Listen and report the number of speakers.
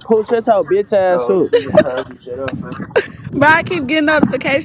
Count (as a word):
three